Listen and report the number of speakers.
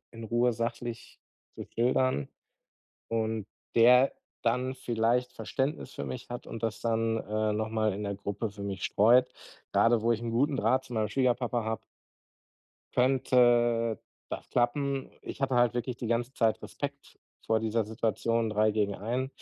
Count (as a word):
one